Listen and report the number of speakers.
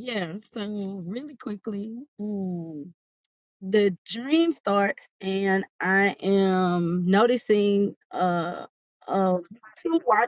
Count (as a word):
one